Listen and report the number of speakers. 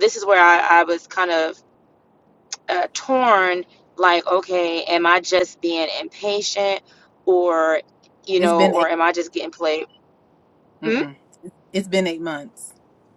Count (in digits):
2